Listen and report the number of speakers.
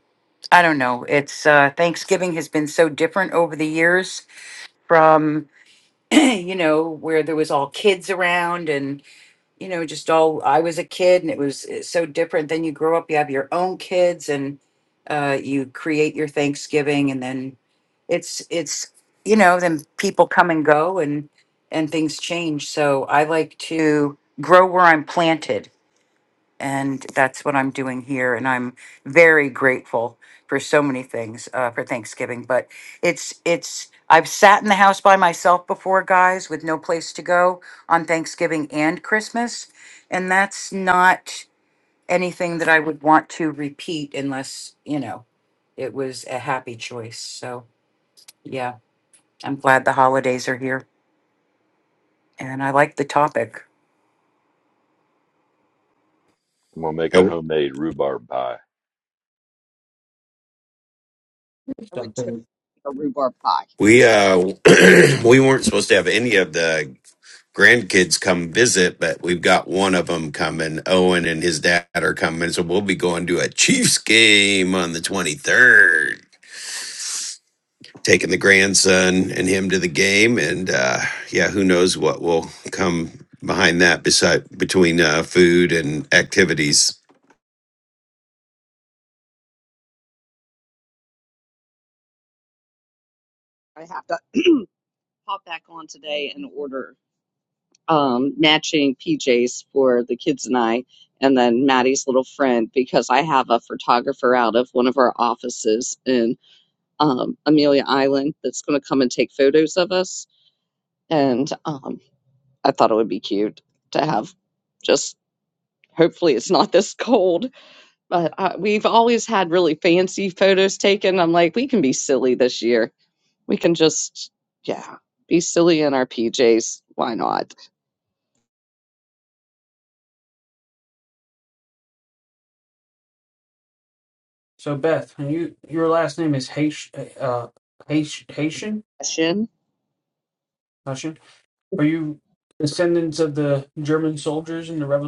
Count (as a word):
five